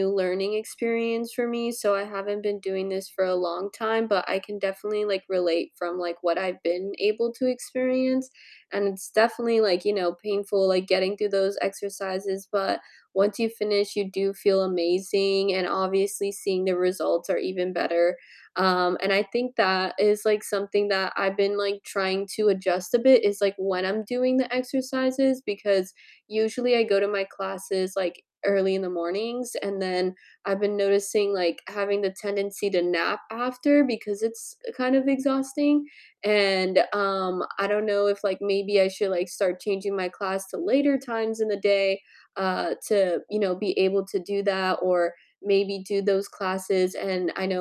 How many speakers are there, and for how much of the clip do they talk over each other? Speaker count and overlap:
1, no overlap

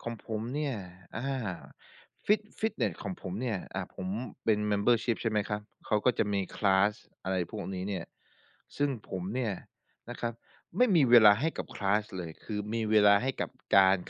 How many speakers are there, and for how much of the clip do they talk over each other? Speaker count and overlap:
1, no overlap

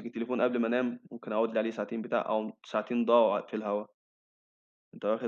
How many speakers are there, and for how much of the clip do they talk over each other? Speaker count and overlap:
1, no overlap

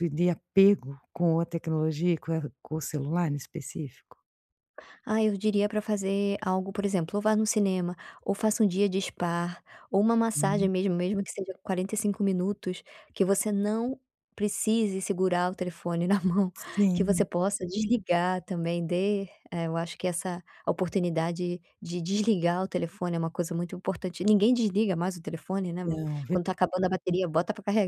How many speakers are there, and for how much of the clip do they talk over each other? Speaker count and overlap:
2, about 3%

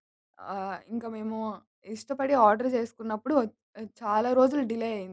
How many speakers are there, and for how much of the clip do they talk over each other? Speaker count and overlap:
1, no overlap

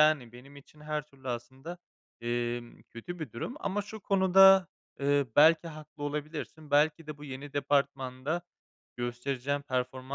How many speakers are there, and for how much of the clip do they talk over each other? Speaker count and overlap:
1, no overlap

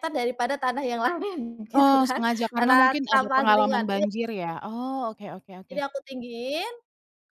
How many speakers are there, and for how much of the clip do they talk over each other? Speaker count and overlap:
2, about 29%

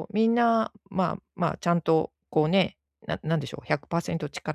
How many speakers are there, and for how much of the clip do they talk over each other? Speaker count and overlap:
1, no overlap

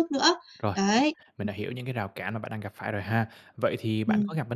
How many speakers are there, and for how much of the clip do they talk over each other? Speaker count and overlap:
2, about 6%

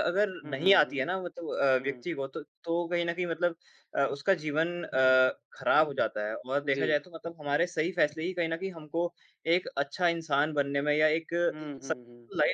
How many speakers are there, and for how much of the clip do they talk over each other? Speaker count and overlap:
2, about 9%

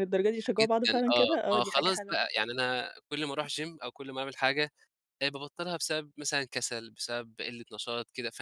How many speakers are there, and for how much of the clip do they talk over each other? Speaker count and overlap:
2, about 19%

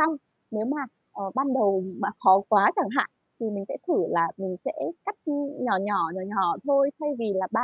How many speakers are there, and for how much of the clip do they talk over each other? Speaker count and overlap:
1, no overlap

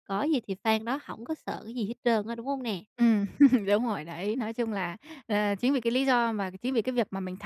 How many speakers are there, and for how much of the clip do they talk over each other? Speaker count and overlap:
2, no overlap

